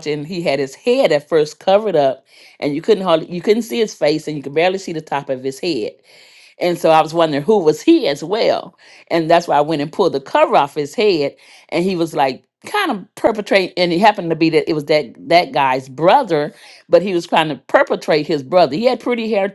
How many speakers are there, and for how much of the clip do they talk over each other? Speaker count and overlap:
one, no overlap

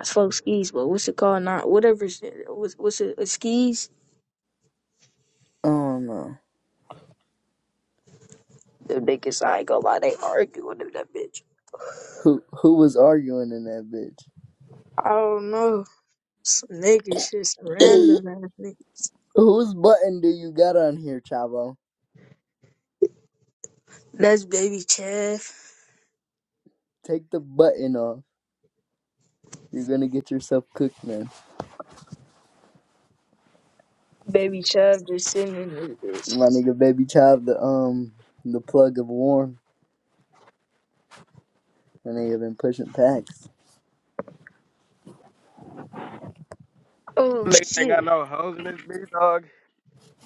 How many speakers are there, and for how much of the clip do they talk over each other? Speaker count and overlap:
three, about 2%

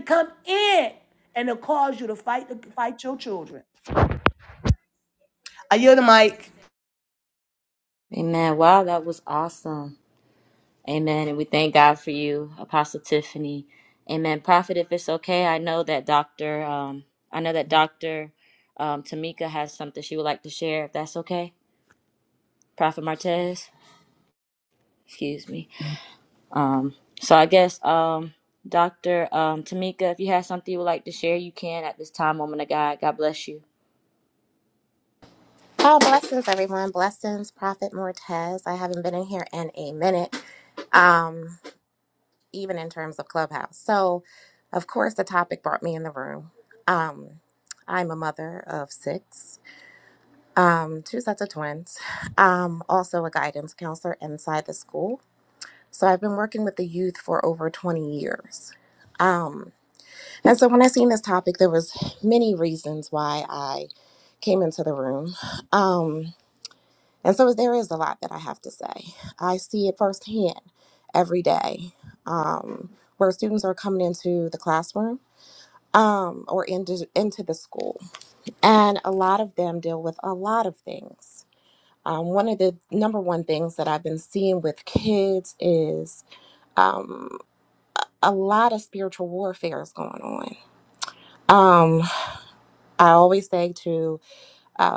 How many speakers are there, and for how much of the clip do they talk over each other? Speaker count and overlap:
three, no overlap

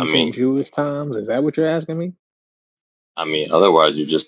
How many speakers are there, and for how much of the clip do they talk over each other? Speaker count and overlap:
two, about 11%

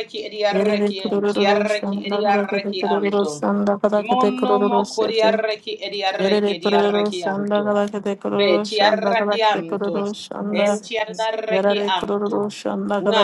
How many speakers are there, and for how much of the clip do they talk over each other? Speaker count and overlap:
two, about 68%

